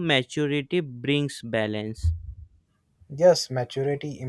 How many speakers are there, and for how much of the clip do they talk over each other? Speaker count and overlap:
2, no overlap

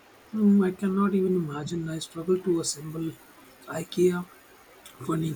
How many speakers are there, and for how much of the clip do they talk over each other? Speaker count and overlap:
1, no overlap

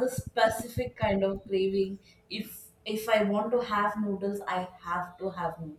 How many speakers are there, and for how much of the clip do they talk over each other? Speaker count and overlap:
1, no overlap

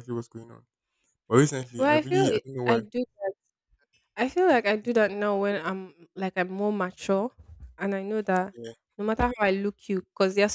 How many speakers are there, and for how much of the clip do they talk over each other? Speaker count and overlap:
2, about 10%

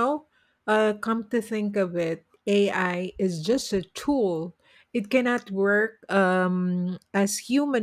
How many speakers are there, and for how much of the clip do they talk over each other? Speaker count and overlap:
1, no overlap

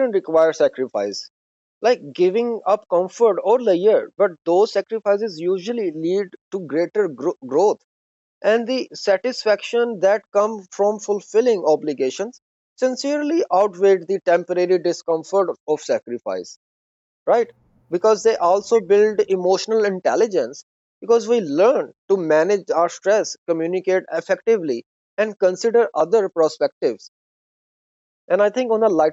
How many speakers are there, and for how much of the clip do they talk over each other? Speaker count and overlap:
1, no overlap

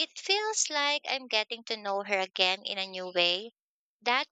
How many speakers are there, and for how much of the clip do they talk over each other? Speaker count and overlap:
1, no overlap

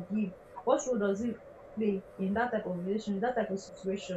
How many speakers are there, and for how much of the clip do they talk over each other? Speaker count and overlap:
1, no overlap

